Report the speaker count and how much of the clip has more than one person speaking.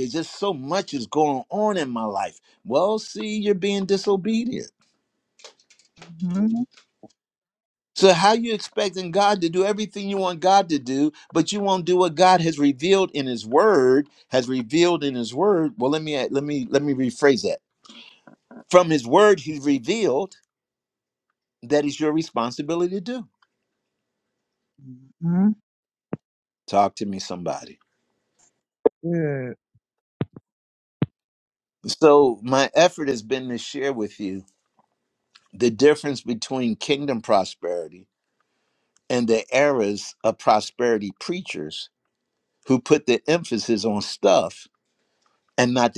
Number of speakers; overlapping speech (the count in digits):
2, no overlap